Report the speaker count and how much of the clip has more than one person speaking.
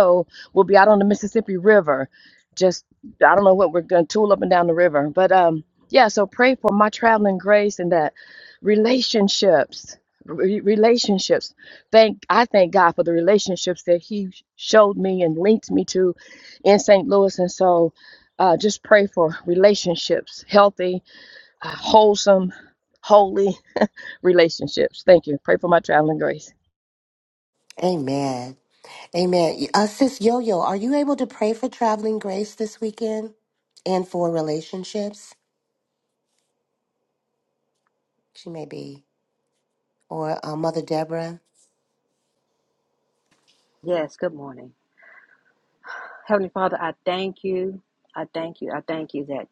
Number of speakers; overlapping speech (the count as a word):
three, no overlap